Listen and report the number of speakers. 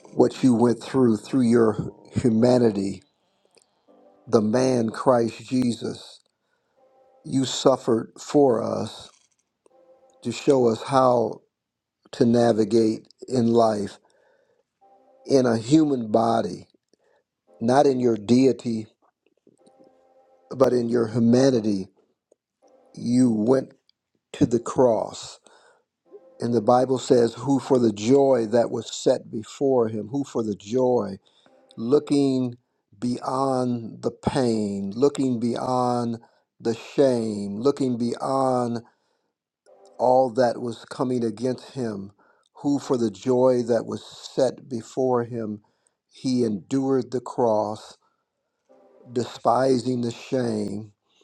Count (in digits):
1